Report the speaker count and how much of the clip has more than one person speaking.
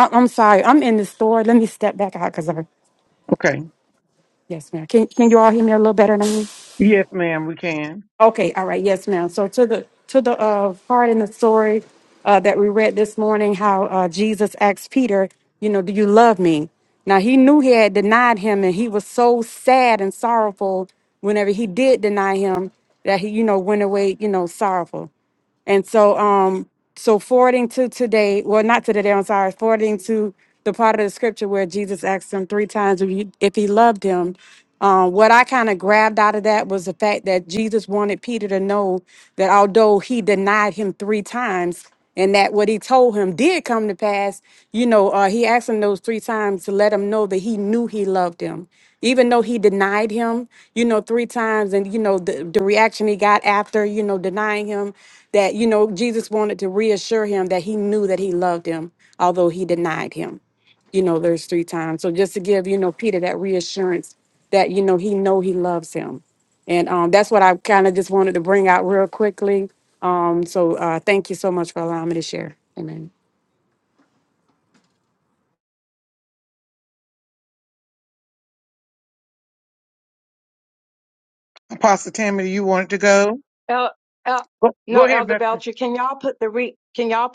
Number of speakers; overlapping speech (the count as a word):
three, about 1%